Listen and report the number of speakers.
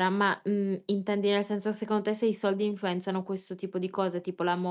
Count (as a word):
one